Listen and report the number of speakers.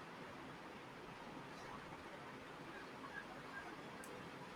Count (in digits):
0